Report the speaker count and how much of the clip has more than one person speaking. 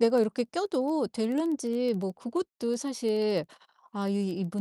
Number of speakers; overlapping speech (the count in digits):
1, no overlap